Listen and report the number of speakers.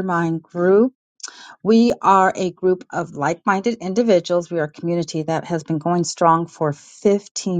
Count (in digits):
1